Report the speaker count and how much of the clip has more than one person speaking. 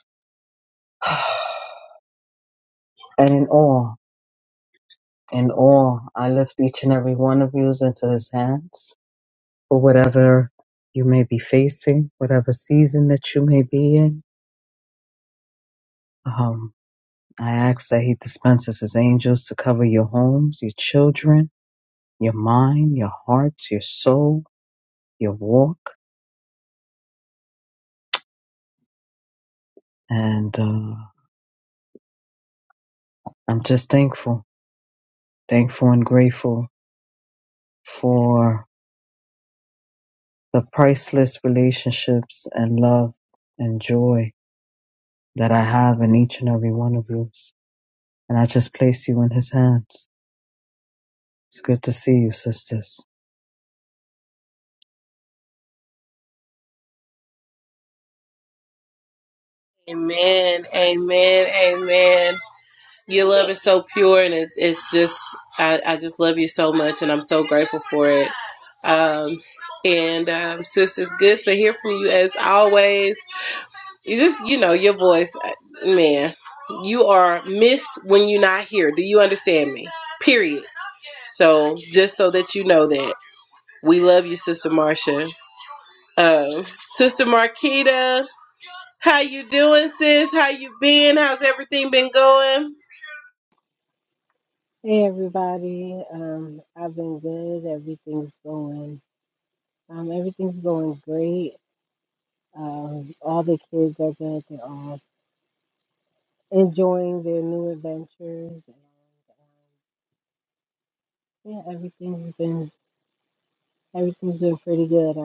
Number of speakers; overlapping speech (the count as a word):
three, no overlap